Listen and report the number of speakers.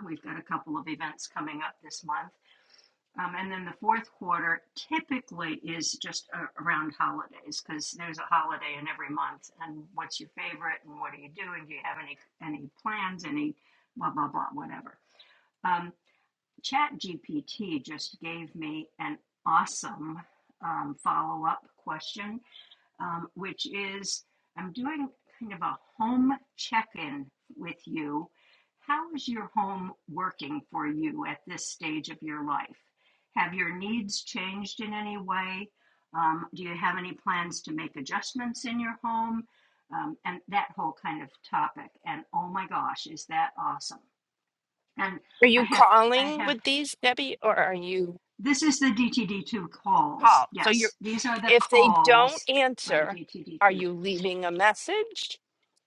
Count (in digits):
2